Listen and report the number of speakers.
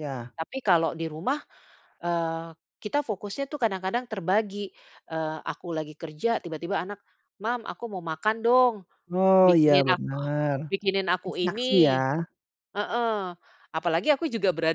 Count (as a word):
two